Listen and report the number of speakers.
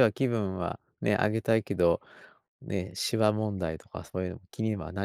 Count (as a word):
one